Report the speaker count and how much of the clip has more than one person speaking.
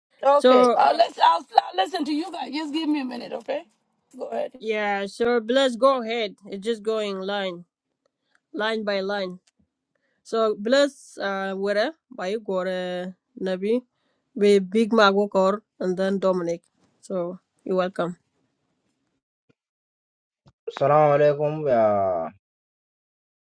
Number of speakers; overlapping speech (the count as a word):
three, about 2%